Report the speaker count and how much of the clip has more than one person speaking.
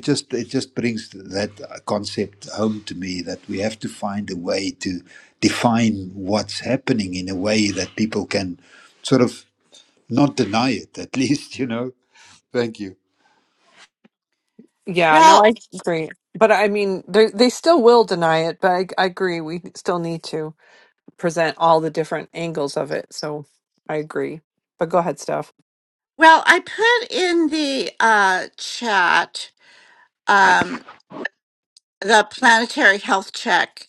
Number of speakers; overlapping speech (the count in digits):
3, about 1%